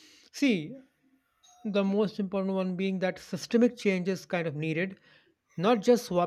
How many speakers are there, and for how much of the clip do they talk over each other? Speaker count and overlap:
one, no overlap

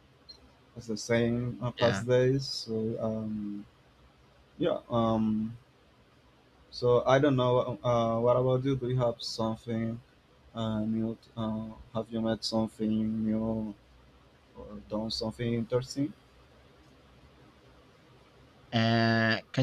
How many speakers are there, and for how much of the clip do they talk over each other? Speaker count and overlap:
two, about 1%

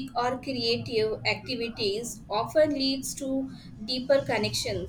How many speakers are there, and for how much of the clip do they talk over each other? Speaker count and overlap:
one, no overlap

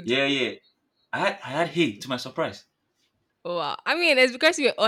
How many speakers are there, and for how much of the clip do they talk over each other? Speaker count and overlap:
two, about 1%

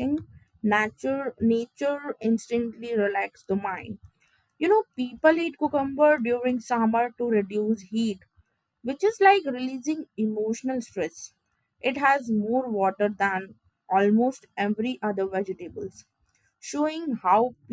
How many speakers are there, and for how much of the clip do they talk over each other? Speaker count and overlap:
one, no overlap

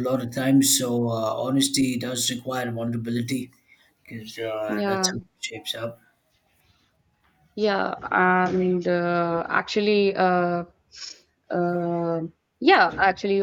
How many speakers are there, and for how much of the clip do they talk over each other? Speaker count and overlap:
two, about 4%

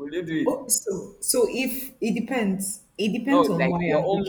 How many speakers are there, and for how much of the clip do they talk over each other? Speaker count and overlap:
two, about 29%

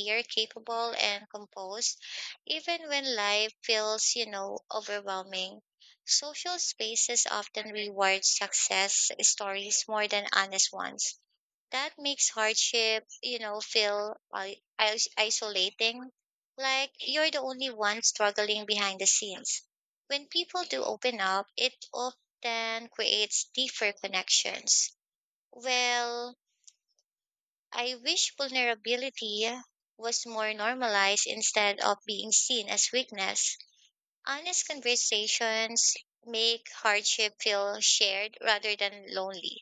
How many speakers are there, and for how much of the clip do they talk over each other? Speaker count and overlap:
one, no overlap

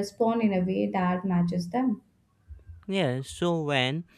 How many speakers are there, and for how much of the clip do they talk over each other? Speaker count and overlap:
two, no overlap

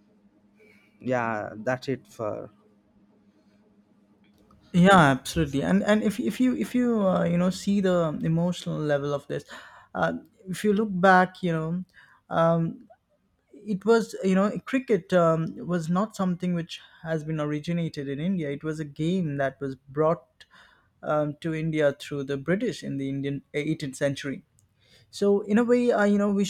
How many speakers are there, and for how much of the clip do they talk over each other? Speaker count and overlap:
two, no overlap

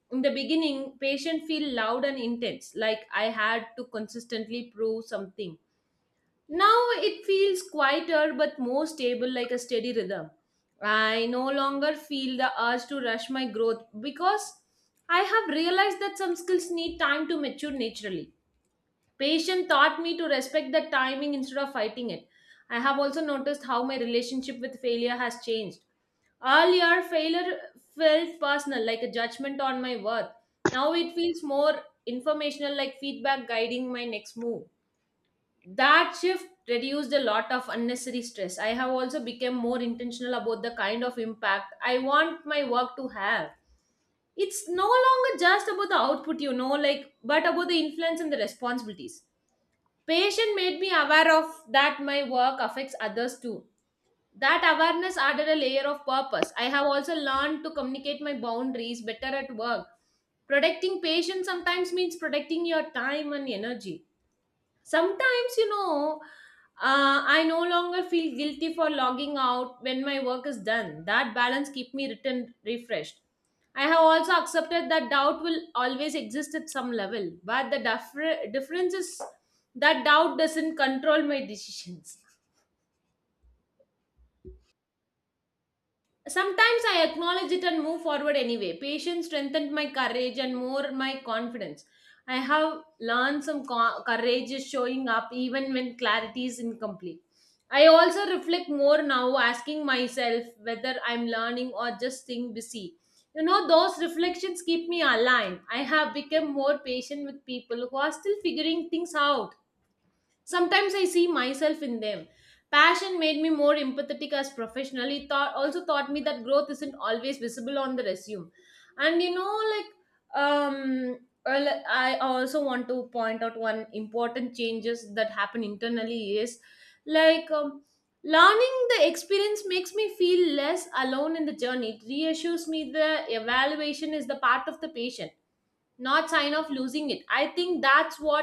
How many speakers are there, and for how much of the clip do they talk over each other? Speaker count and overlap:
one, no overlap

